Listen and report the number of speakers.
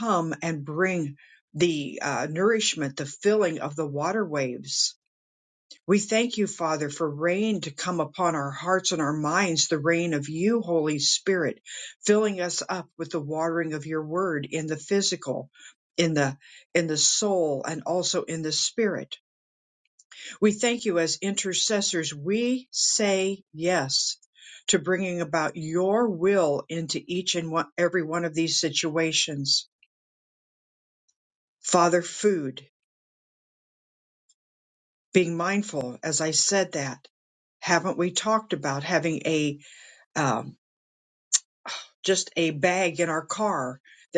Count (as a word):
one